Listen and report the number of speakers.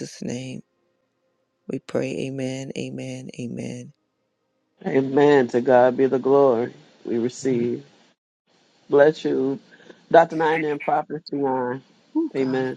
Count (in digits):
2